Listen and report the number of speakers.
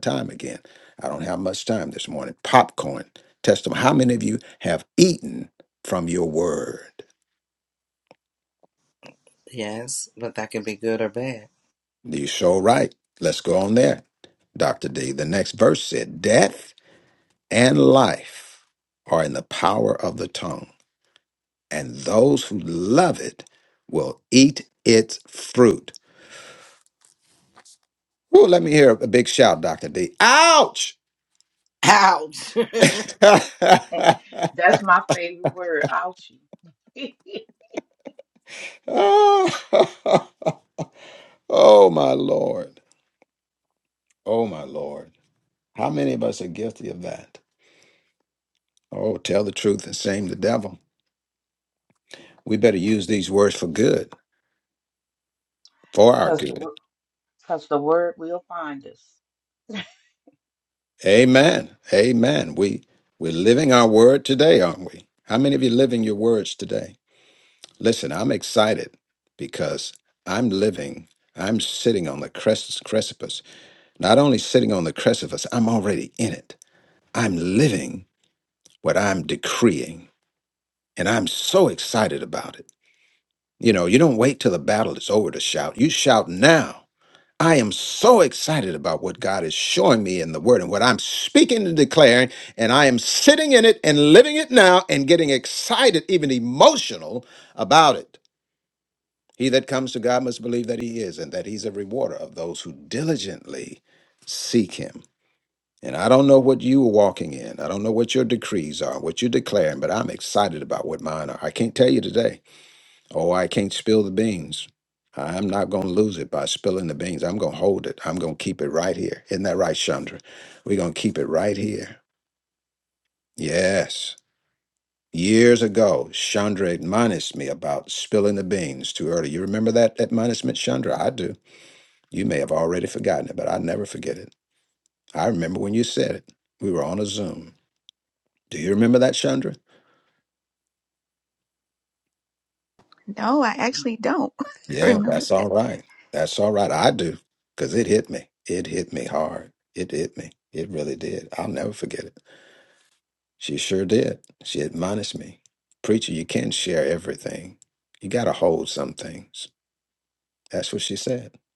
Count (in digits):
4